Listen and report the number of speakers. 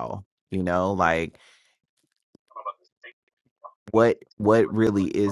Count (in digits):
1